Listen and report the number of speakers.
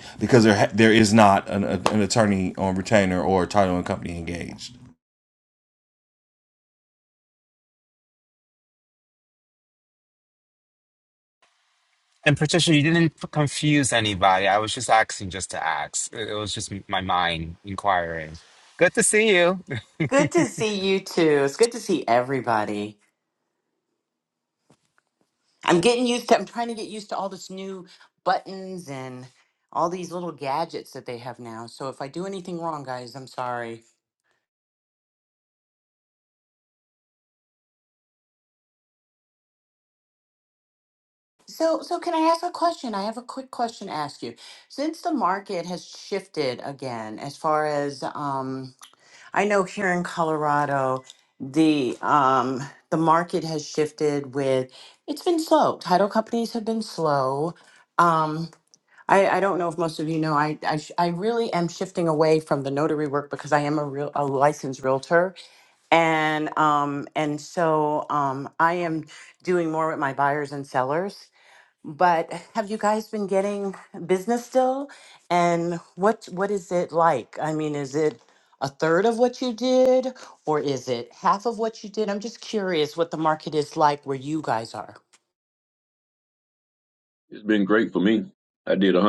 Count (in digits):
4